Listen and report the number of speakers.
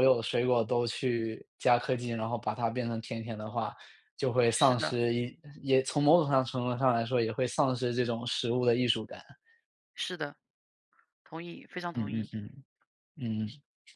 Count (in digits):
2